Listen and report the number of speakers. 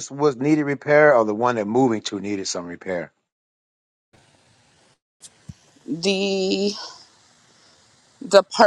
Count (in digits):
2